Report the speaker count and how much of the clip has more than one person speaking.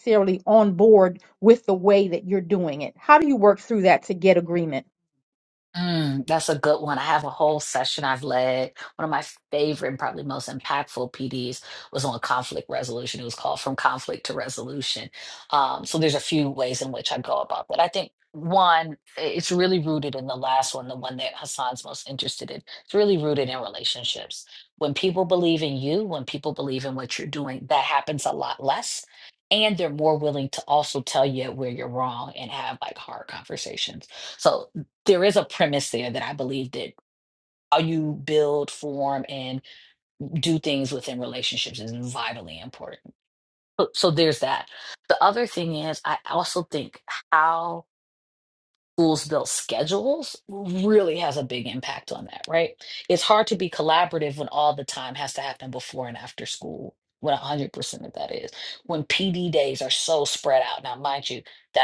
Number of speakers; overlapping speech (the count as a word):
two, no overlap